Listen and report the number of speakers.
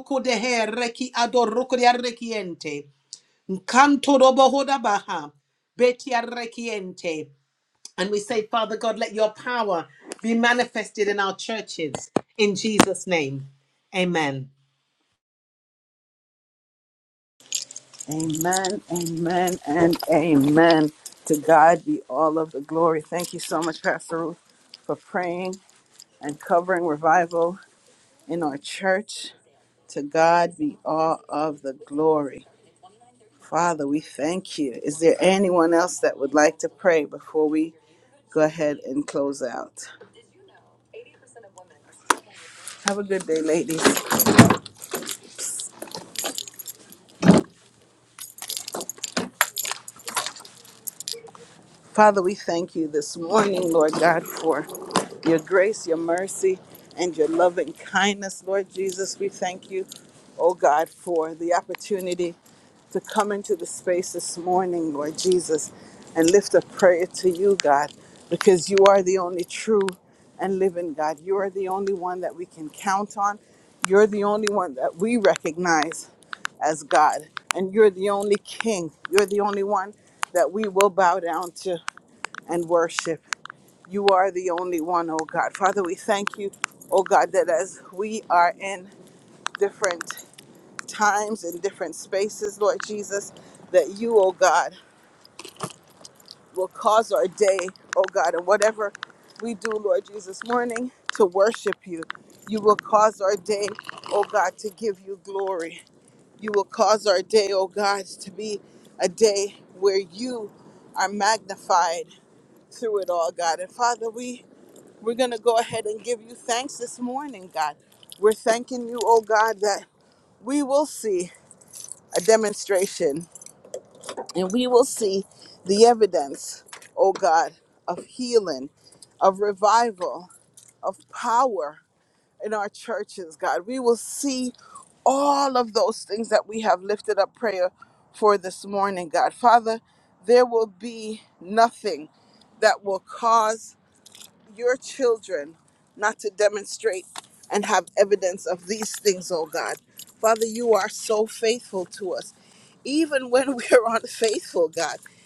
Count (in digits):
2